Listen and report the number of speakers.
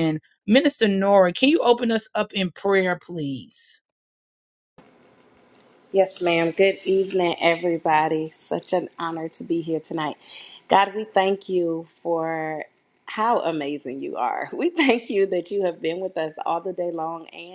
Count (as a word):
two